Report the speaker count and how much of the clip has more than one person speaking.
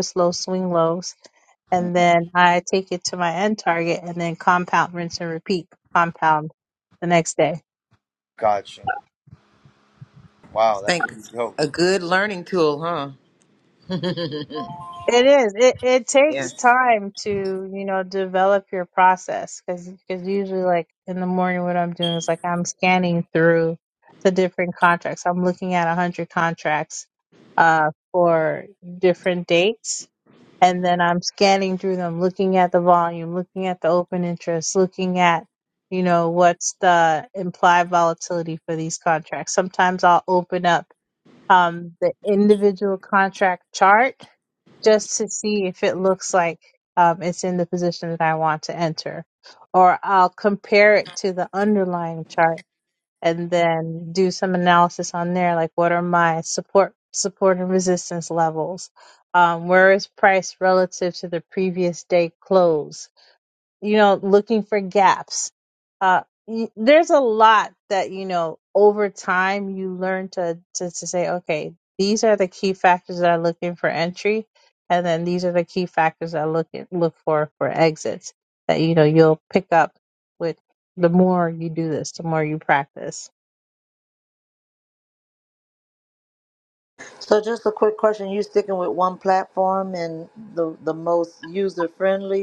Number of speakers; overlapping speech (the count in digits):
4, about 1%